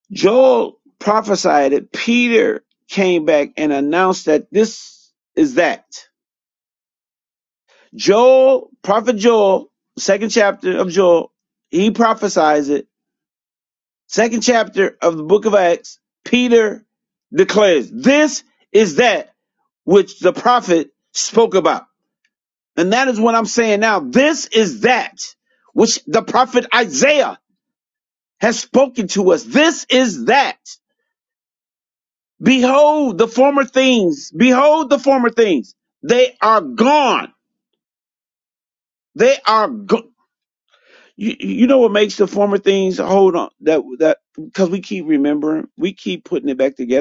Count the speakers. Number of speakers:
one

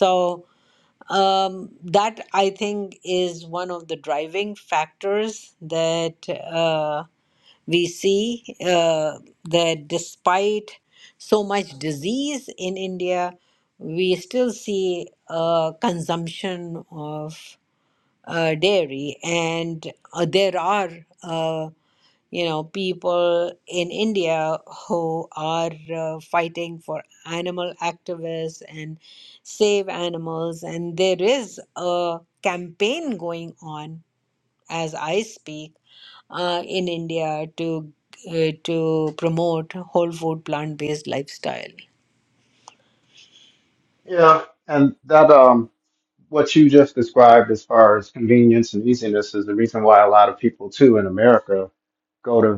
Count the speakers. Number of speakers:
two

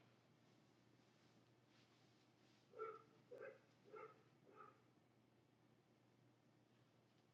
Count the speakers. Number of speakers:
zero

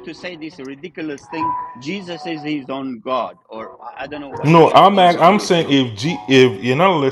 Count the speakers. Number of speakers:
two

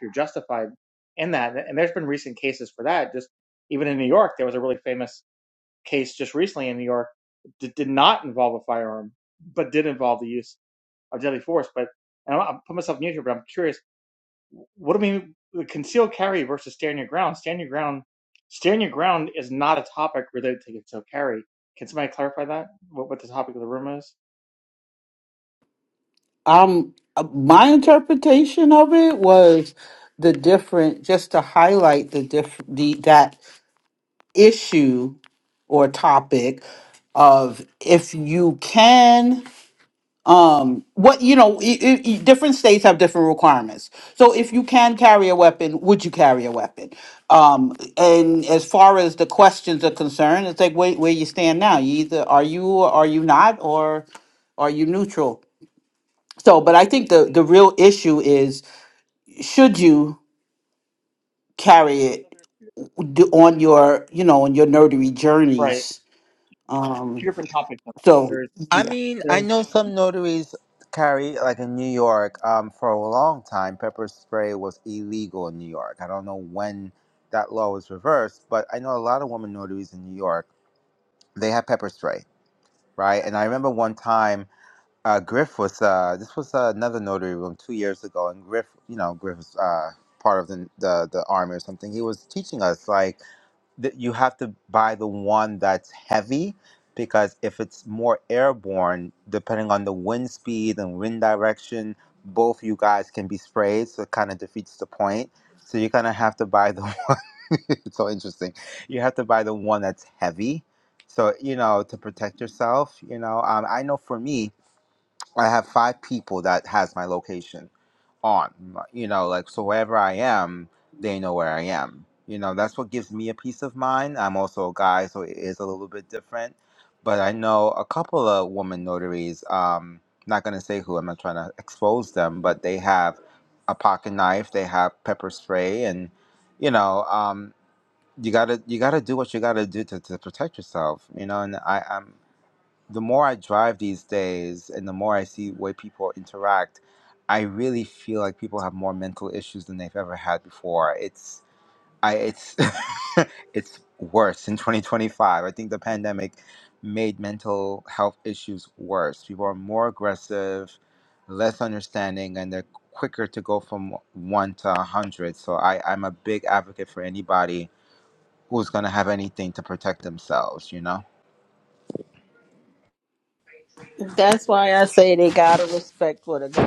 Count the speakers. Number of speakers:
four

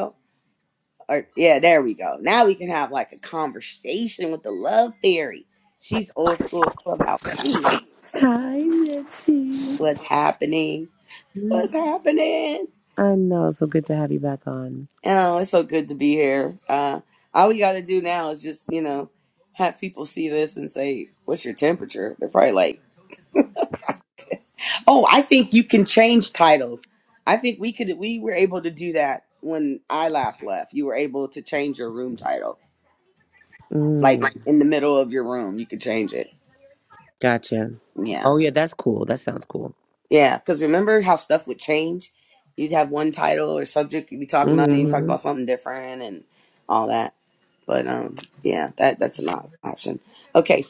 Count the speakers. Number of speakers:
two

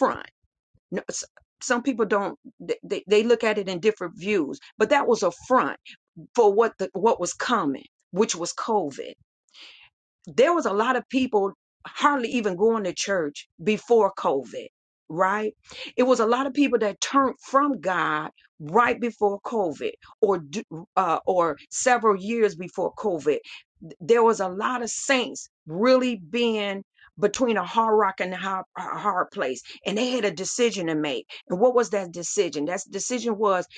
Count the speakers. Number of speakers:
one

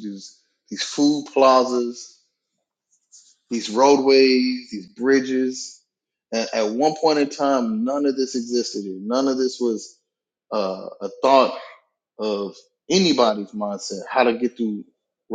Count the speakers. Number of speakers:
one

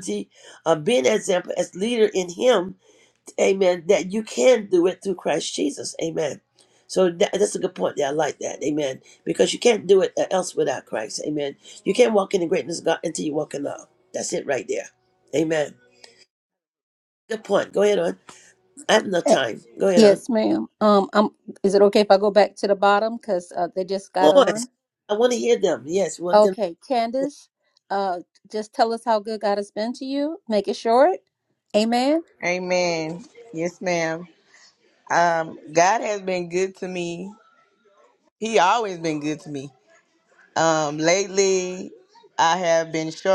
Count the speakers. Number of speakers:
three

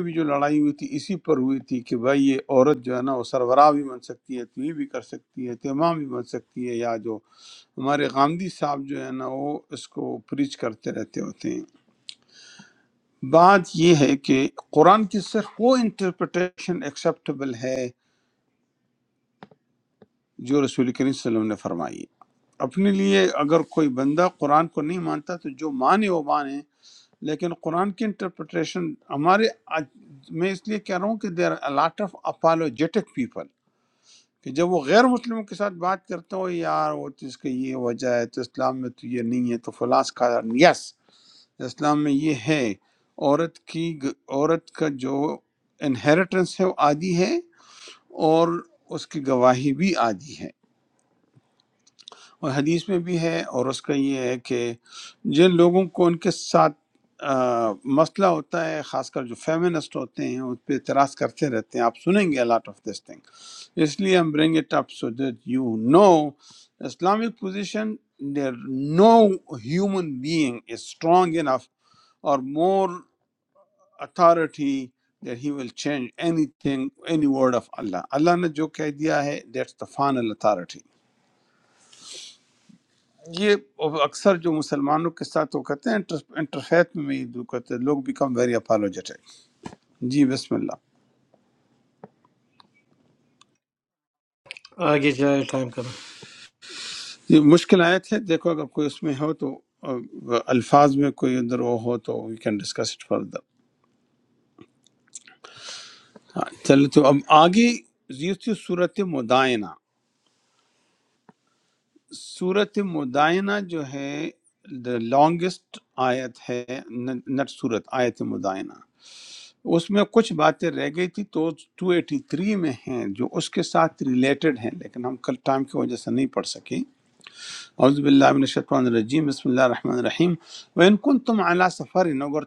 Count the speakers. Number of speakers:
two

